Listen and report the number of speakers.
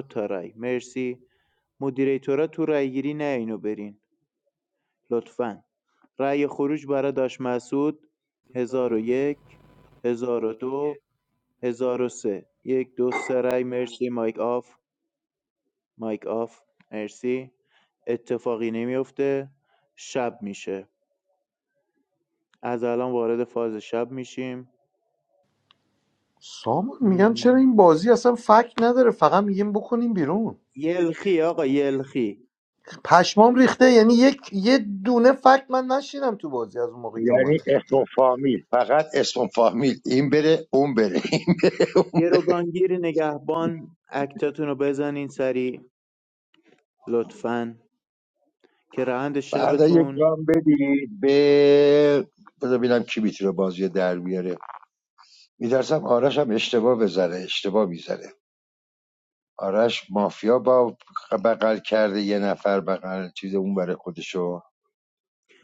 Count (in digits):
3